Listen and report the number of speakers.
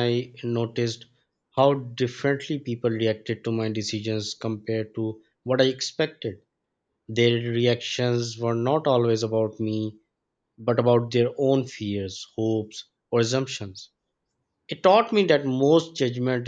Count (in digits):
1